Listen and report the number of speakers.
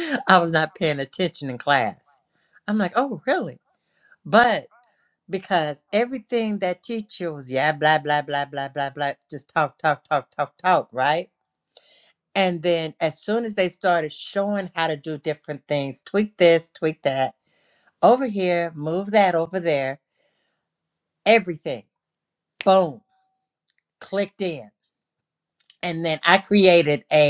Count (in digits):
1